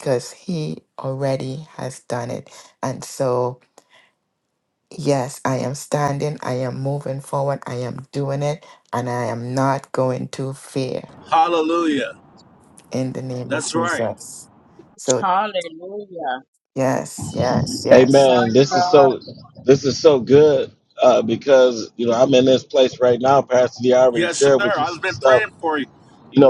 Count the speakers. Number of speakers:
four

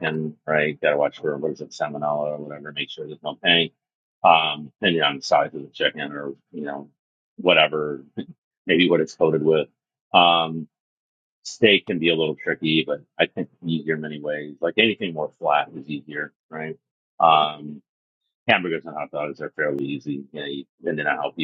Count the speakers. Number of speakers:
one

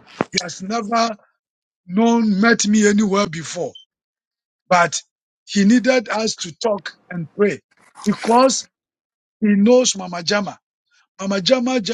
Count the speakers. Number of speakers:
one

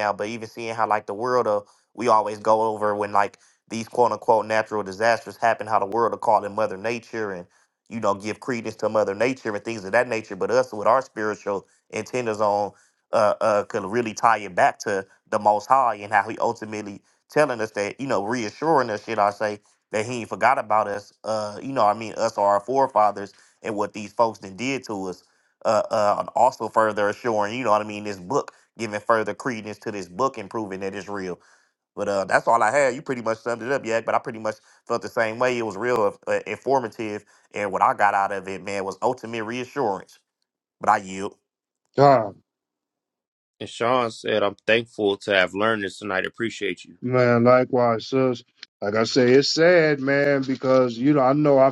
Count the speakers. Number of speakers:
three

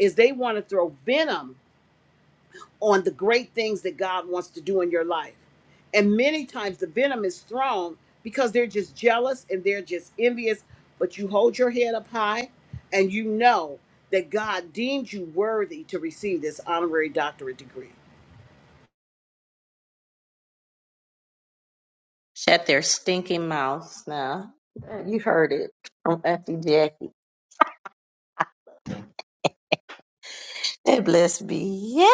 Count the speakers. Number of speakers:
two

